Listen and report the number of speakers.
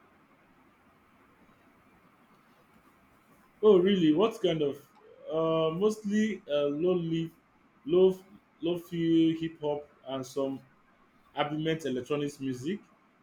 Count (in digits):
1